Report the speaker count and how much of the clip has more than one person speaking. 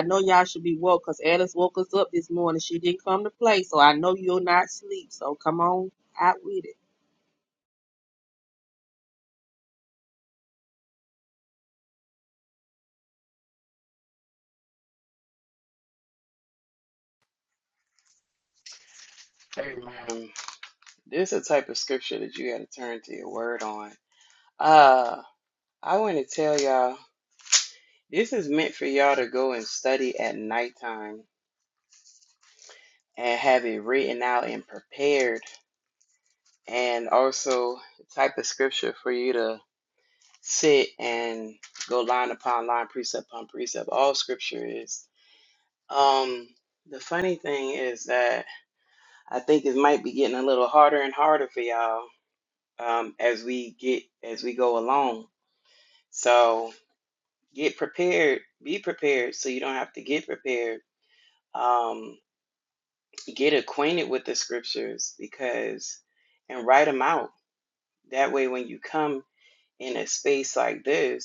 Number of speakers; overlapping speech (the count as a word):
two, no overlap